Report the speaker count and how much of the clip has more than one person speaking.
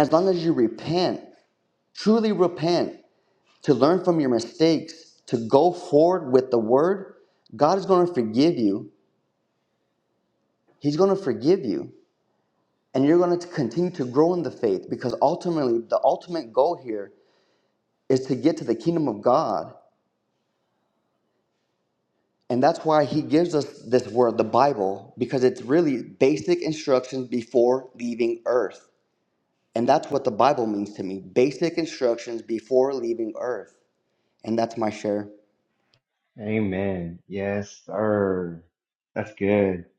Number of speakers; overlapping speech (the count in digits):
2, no overlap